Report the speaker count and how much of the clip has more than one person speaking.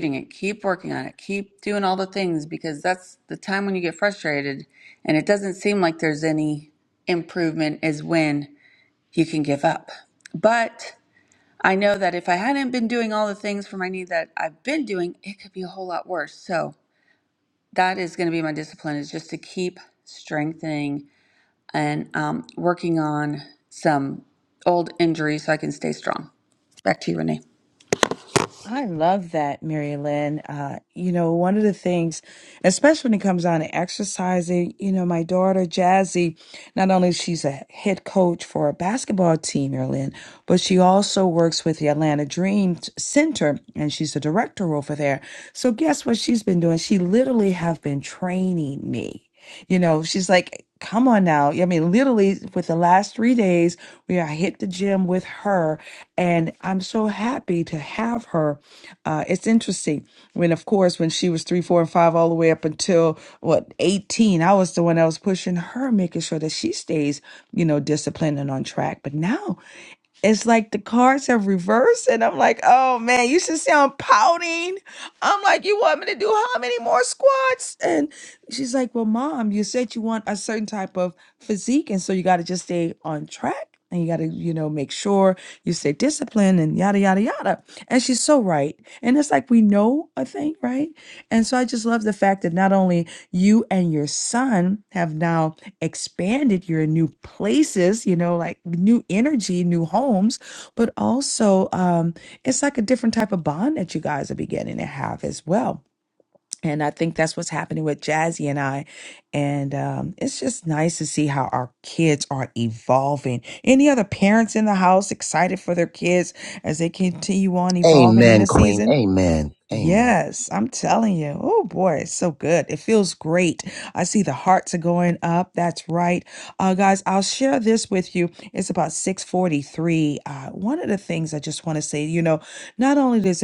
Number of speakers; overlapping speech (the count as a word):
three, about 1%